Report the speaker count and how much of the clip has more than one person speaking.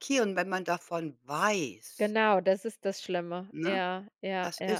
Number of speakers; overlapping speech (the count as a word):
two, about 13%